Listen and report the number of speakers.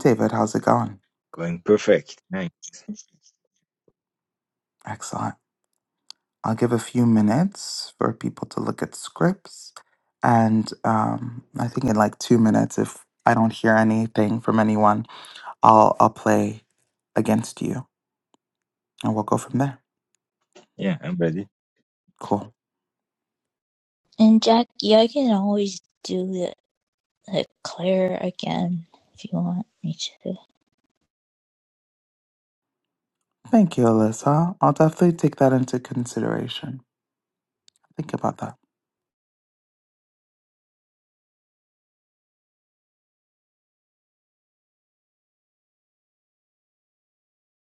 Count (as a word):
three